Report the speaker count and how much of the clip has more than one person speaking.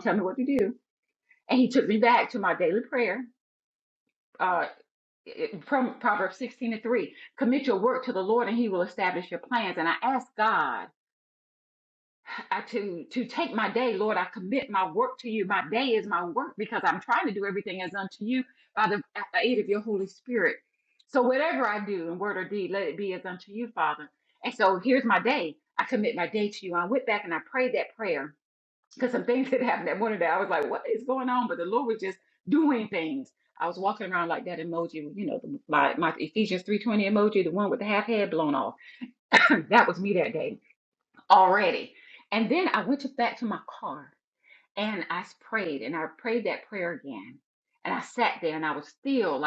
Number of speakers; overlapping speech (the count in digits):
1, no overlap